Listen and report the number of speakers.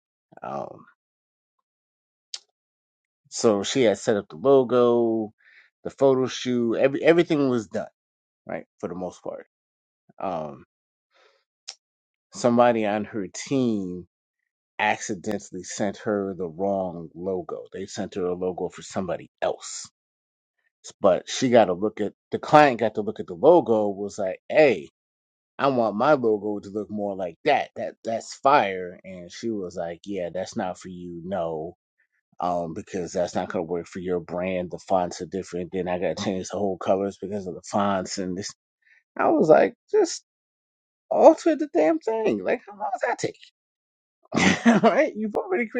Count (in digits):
1